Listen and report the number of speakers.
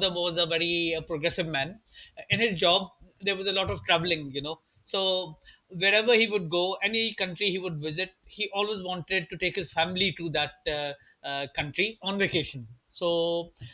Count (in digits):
1